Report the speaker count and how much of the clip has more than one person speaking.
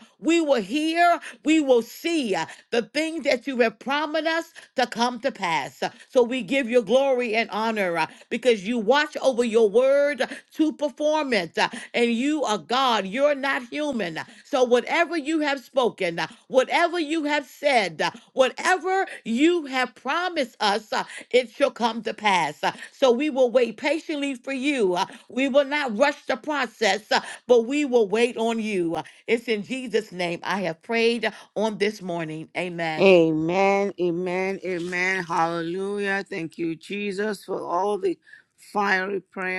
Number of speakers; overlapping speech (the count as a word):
two, under 1%